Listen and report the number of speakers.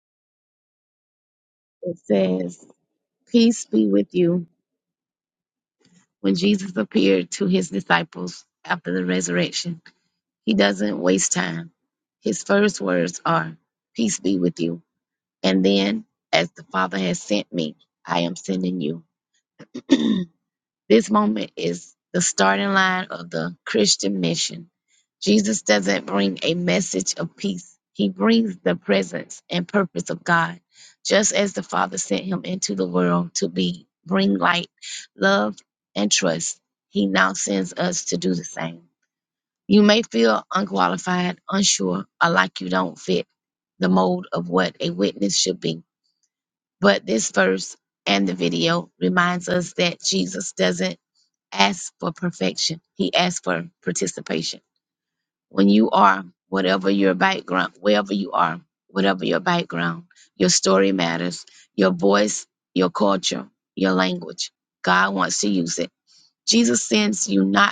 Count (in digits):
1